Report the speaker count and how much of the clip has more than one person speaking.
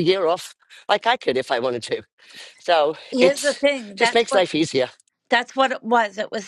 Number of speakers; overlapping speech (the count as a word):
two, about 15%